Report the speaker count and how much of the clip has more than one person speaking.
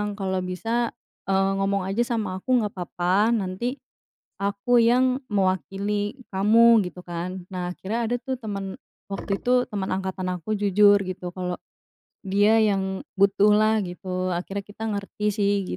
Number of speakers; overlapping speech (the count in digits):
1, no overlap